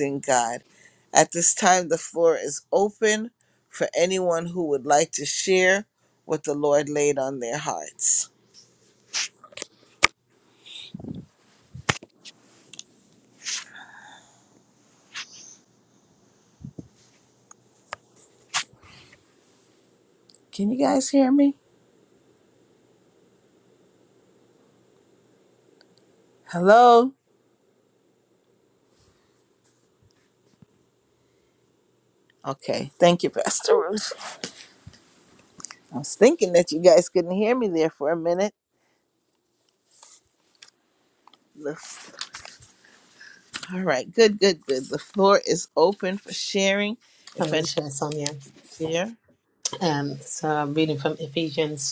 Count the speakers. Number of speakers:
2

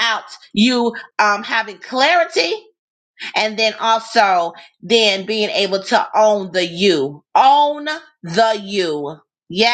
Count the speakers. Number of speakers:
1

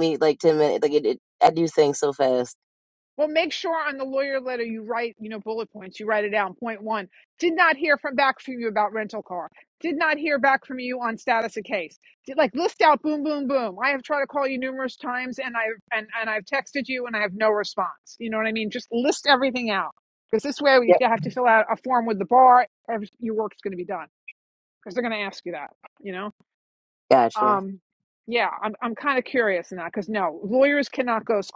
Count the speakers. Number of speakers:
2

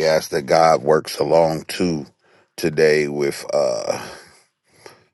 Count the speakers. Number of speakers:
1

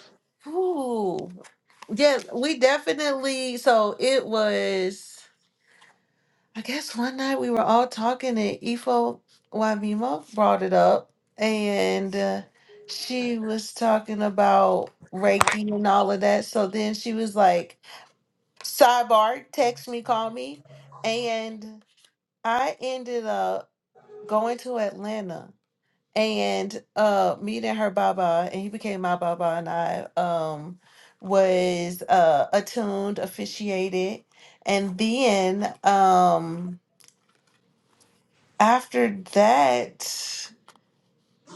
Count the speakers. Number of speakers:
1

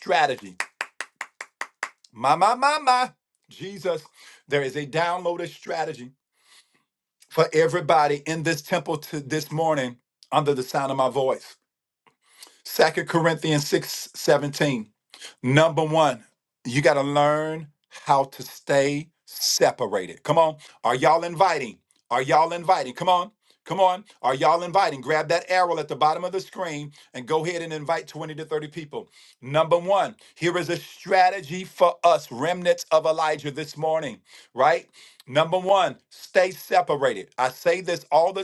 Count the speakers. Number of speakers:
1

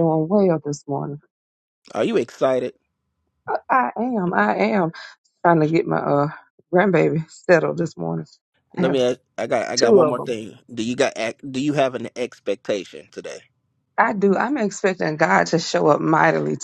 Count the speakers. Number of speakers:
2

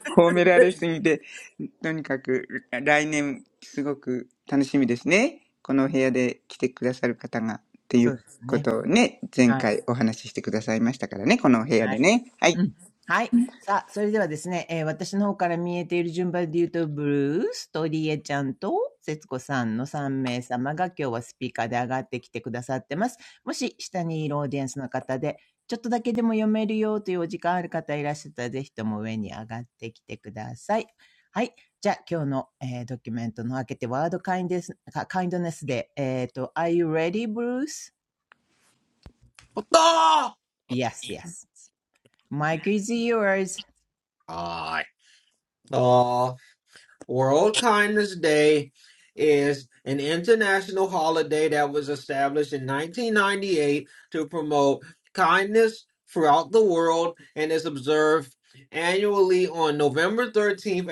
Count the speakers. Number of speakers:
3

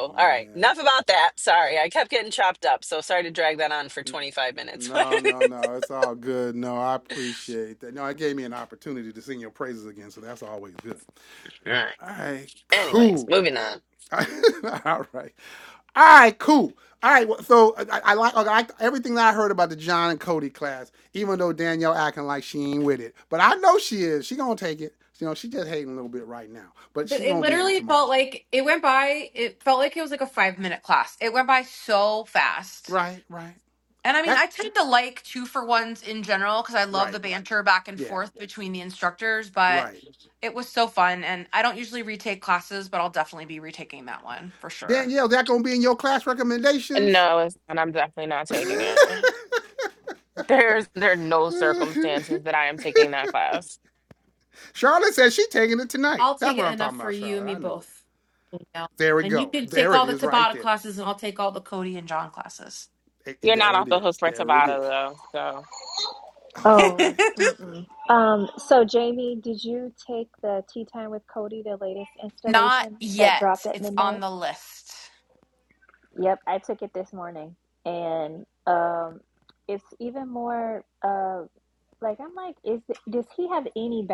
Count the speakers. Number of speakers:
5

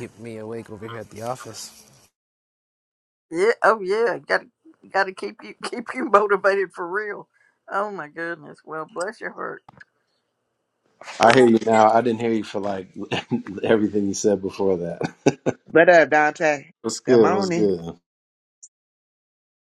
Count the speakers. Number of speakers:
4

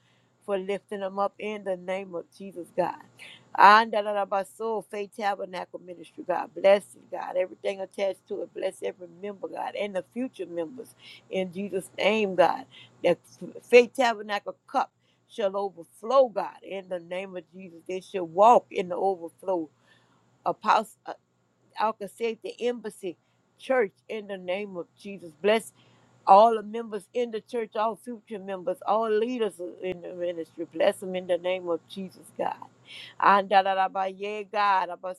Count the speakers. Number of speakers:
1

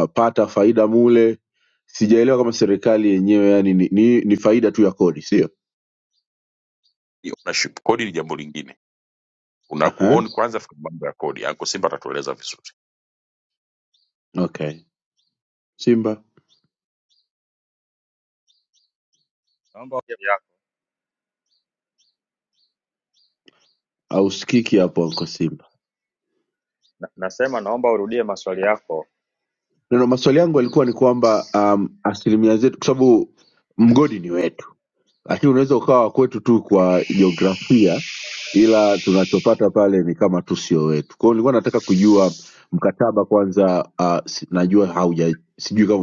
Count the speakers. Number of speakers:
3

